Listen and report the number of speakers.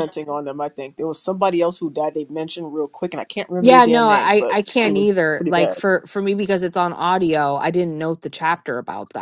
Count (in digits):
2